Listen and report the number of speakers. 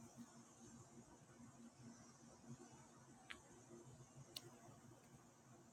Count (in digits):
0